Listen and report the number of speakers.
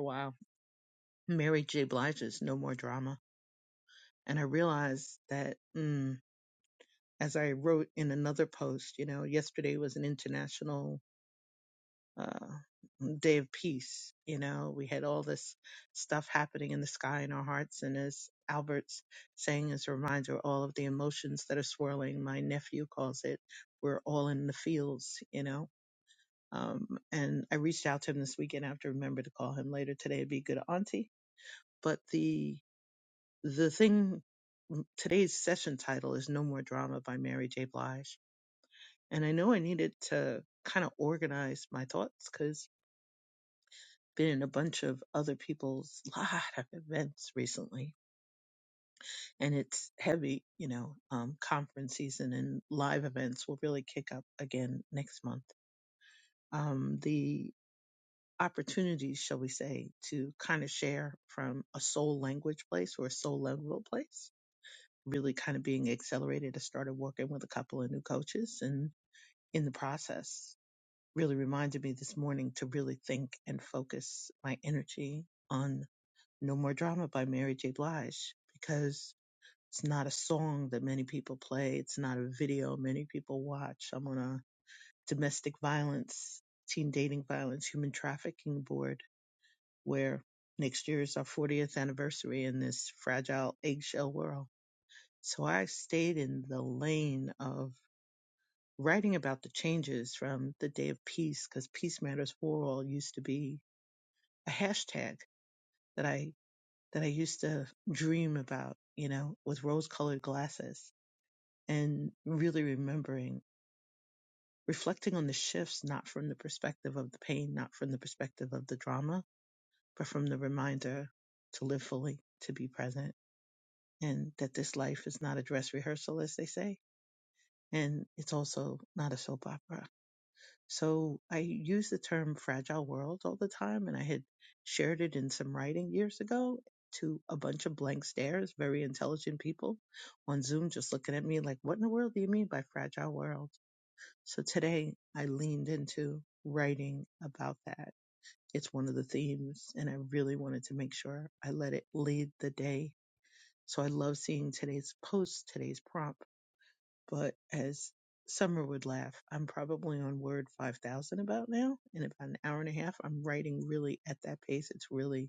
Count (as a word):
one